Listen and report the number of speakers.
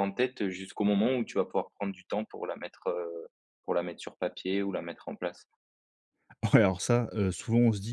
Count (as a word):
two